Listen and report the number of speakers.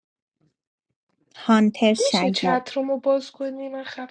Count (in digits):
2